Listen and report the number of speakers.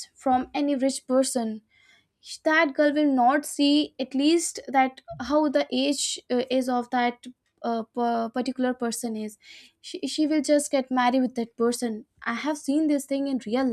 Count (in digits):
1